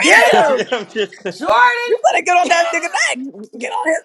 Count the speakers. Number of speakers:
three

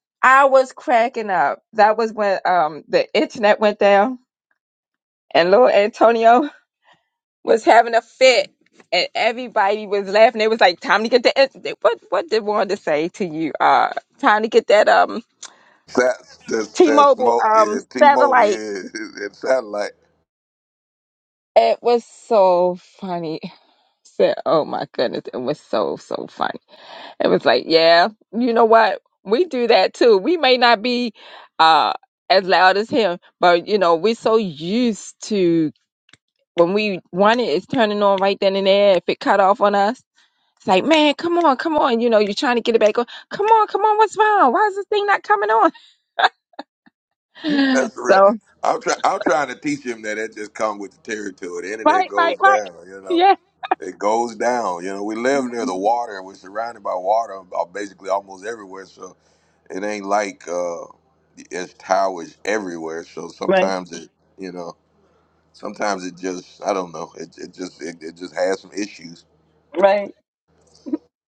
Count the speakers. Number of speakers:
two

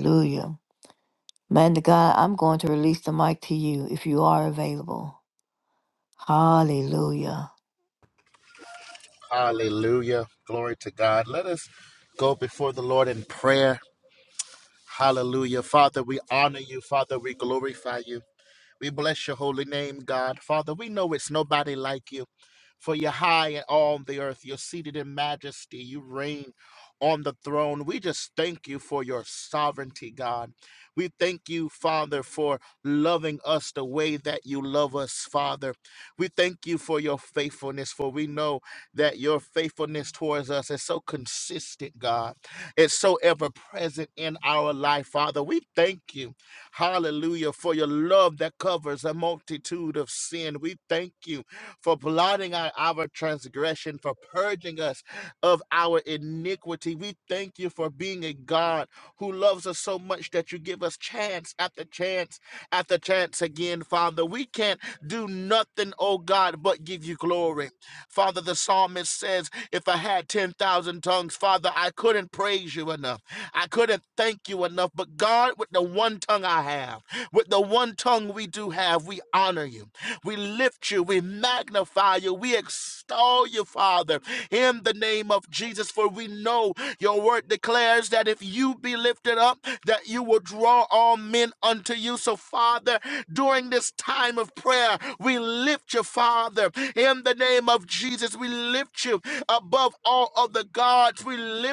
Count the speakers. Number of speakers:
two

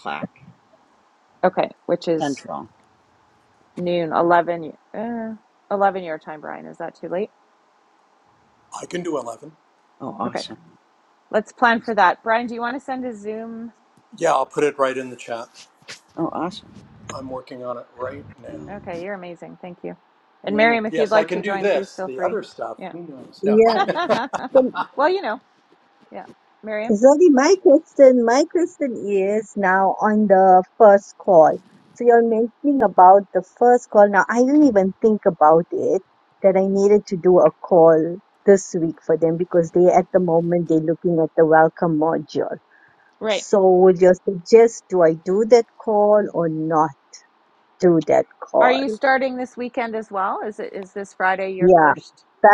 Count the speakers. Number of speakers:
four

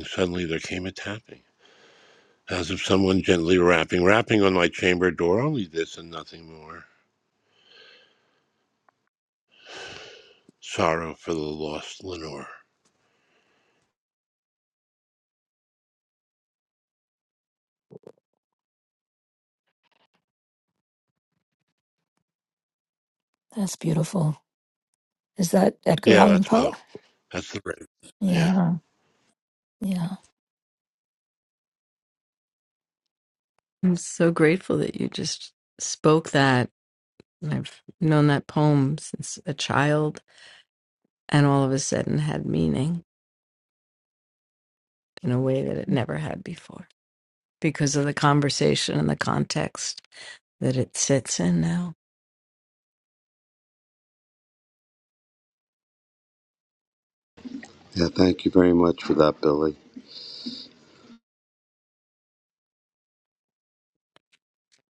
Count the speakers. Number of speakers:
four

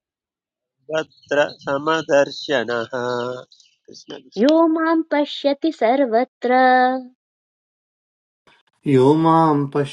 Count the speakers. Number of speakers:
three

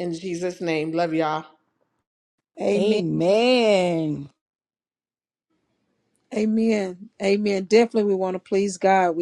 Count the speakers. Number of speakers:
three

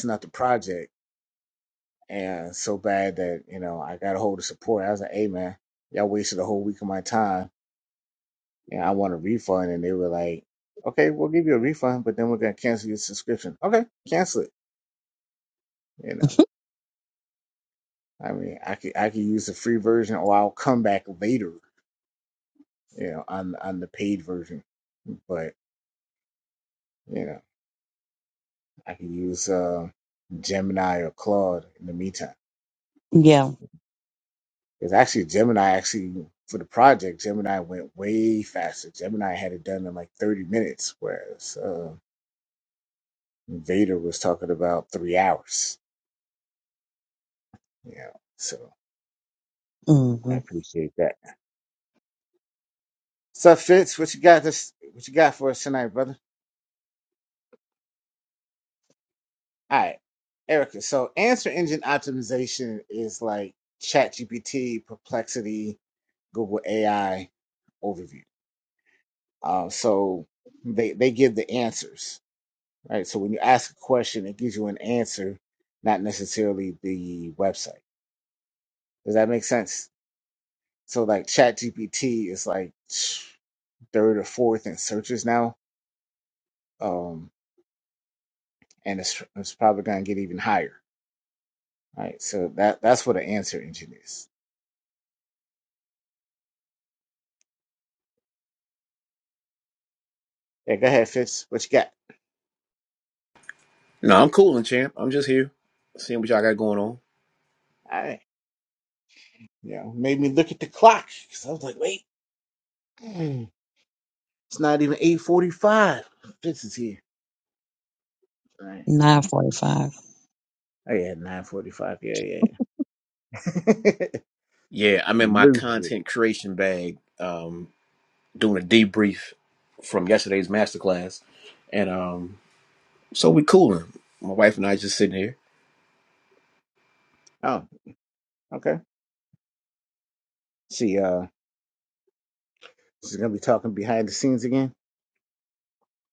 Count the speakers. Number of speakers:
three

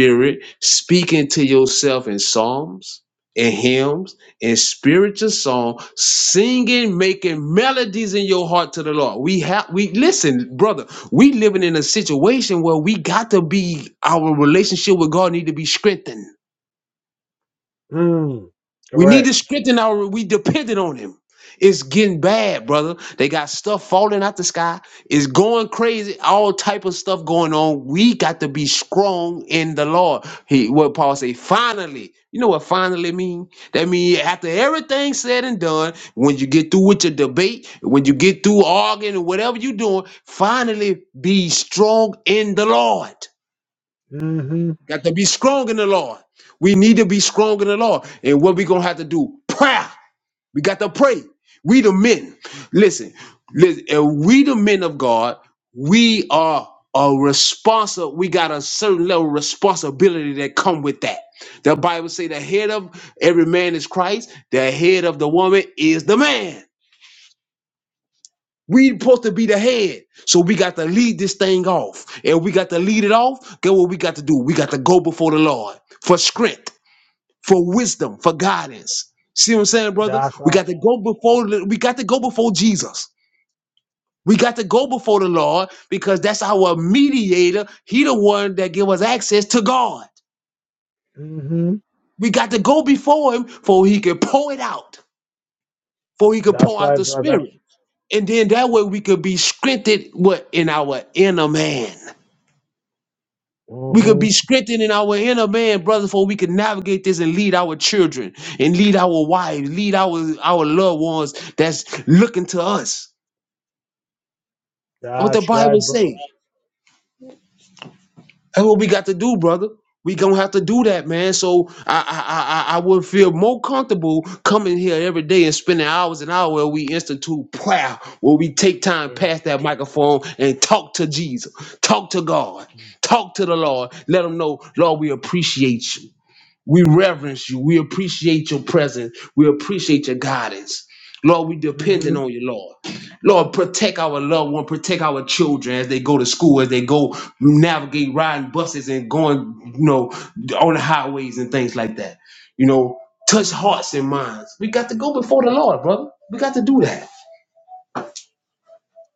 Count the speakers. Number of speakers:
two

